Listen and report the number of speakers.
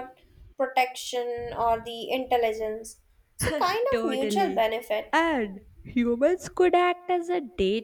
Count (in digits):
2